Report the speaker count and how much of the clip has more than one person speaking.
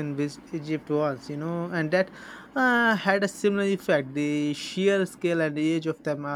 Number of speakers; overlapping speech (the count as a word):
one, no overlap